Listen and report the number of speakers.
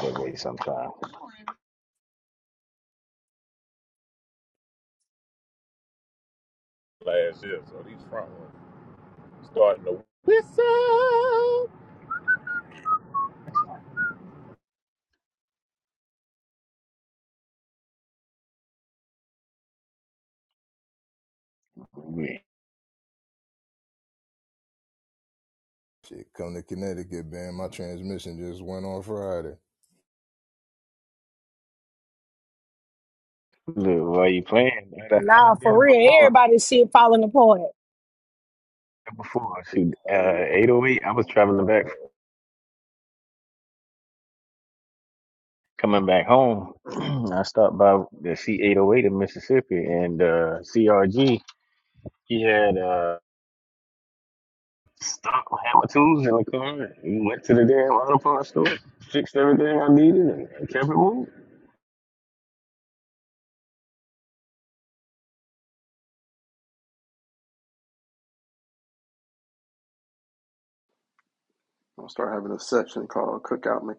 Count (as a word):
five